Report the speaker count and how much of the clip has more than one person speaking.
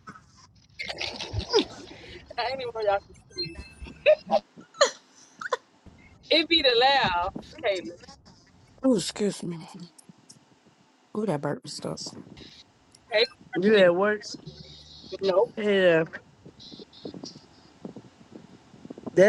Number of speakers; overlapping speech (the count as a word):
three, no overlap